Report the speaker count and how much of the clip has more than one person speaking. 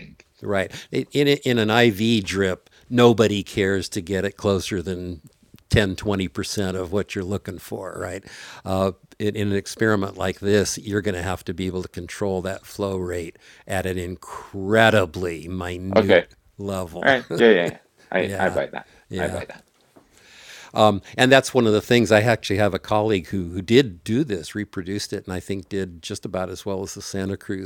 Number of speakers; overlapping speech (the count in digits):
2, about 4%